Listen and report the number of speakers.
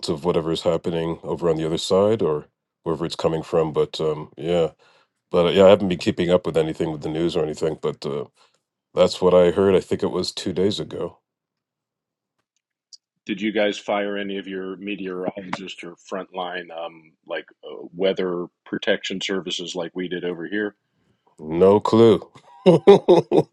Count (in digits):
2